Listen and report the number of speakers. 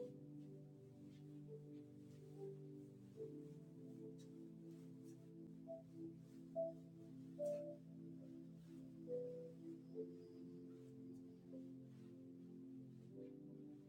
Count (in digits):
0